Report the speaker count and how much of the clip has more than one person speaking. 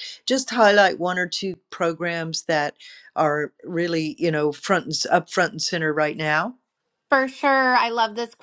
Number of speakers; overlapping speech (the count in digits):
2, no overlap